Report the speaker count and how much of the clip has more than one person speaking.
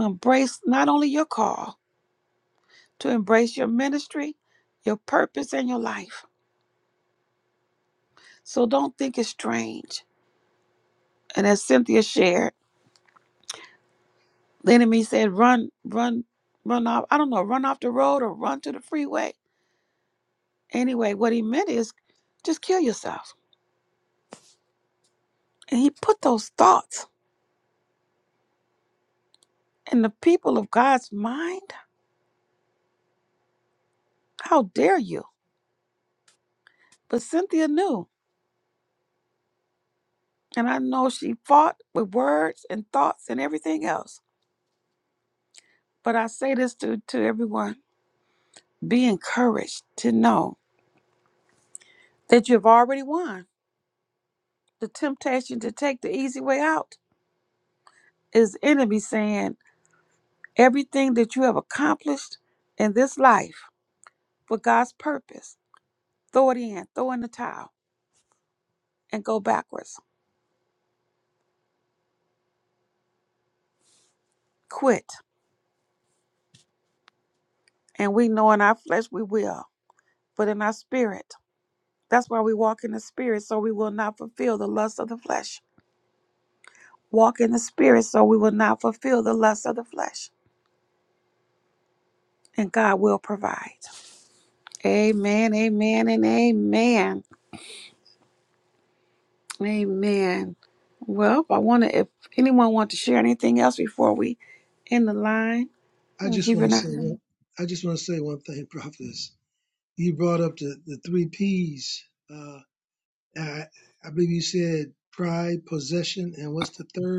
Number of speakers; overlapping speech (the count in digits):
2, about 1%